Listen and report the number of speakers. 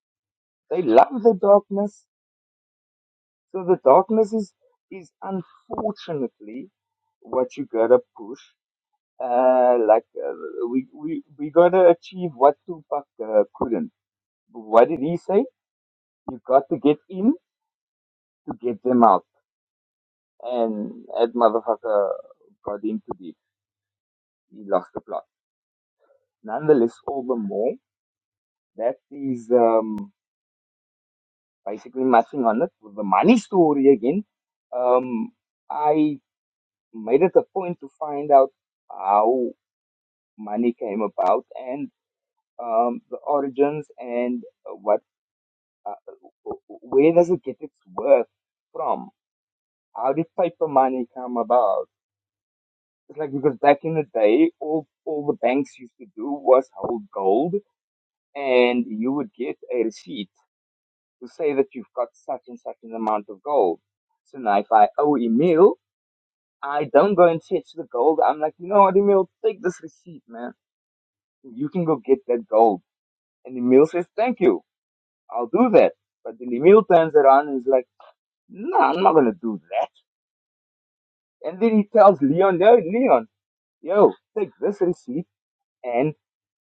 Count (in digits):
1